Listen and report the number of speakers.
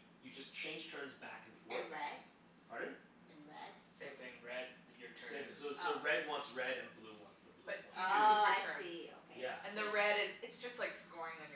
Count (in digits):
4